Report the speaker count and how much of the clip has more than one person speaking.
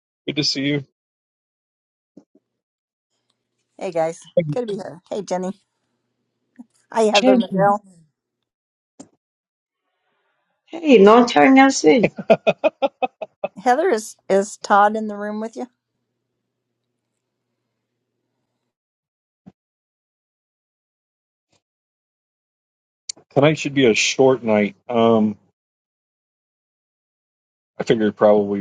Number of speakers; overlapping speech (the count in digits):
3, no overlap